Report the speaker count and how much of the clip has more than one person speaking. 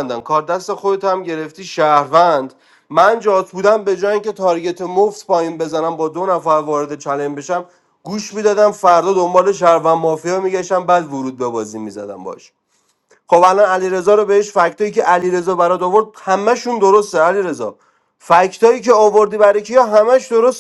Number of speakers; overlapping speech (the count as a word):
one, no overlap